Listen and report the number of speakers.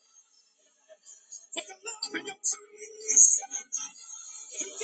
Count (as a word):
zero